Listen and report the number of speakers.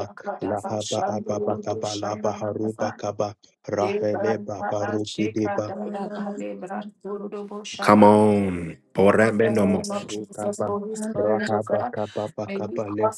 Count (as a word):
three